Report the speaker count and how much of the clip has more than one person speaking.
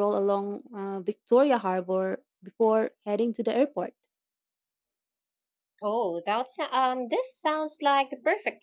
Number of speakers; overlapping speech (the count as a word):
two, no overlap